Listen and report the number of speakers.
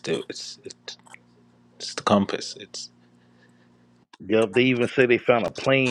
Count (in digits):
2